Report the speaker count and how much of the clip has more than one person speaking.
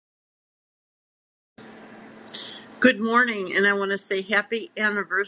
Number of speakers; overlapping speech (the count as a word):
one, no overlap